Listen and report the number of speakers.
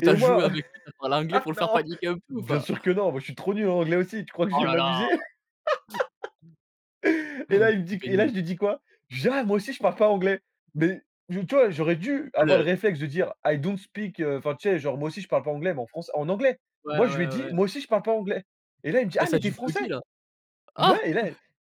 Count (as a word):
two